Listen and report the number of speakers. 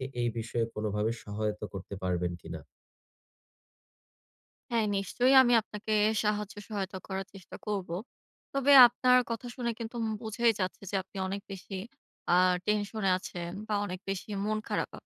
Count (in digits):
2